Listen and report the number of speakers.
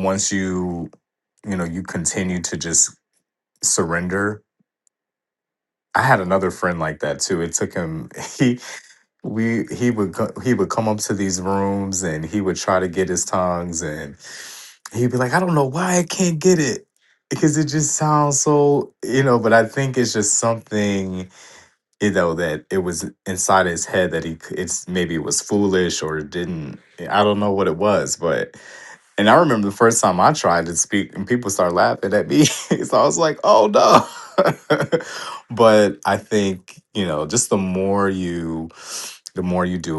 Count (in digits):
1